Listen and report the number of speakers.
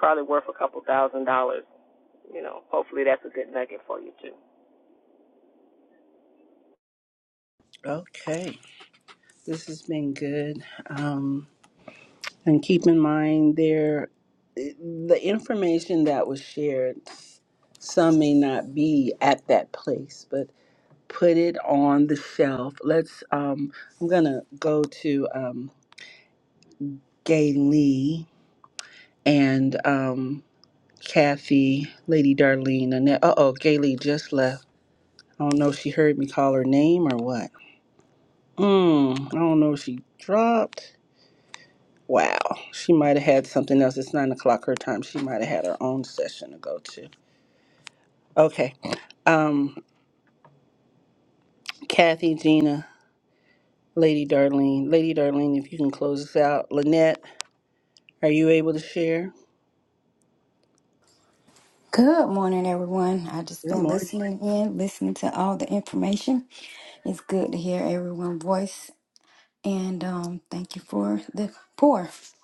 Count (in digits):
3